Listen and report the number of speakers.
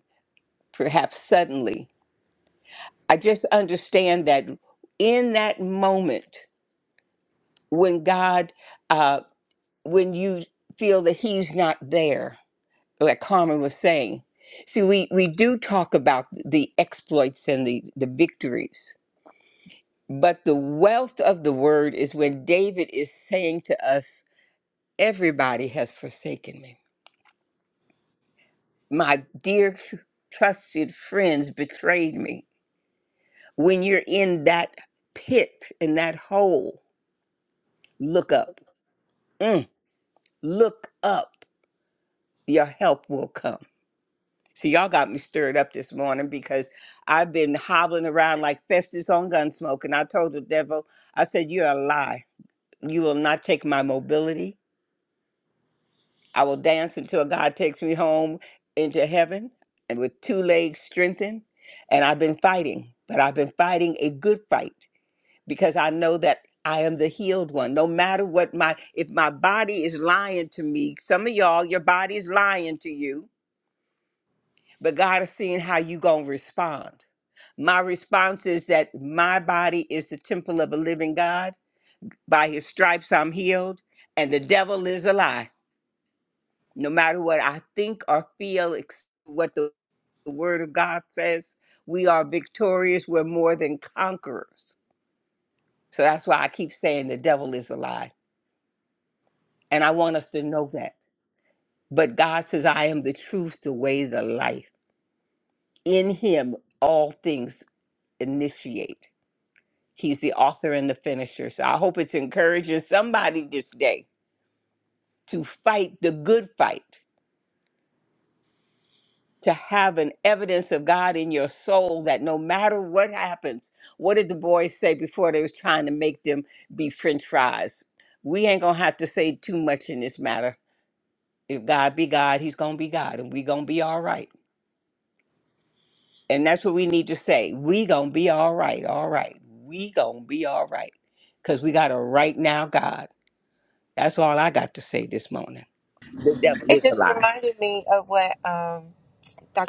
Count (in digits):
2